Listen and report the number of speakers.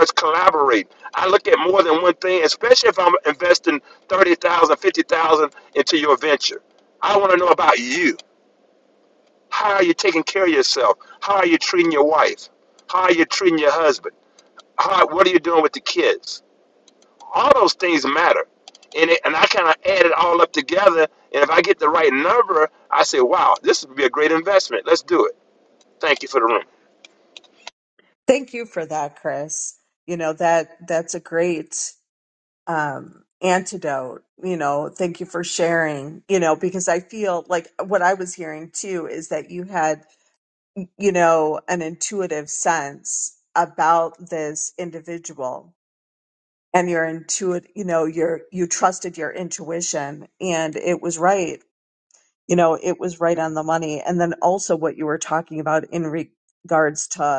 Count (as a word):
two